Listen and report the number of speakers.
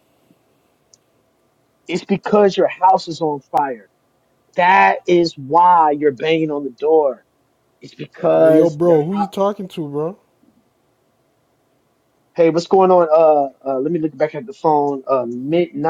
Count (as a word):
two